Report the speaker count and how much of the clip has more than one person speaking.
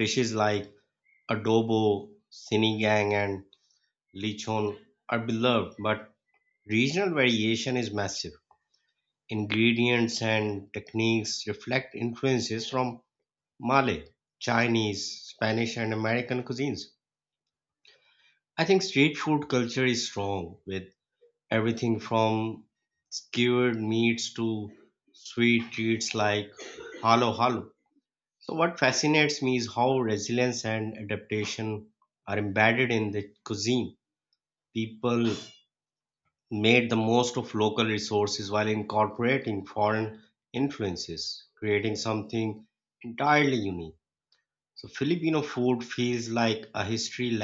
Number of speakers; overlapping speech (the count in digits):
1, no overlap